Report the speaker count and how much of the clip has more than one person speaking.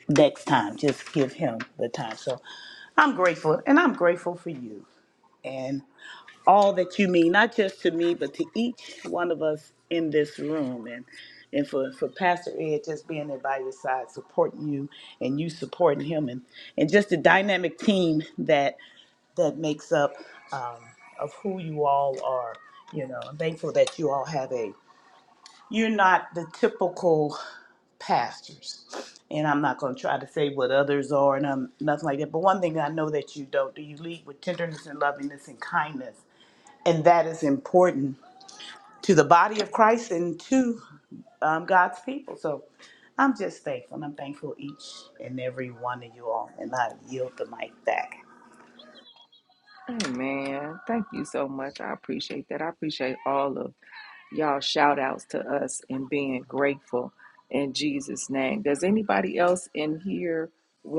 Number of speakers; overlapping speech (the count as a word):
two, no overlap